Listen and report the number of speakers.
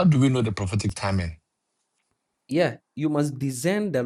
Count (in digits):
2